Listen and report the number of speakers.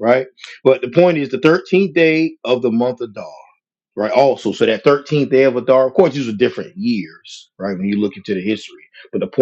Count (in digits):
1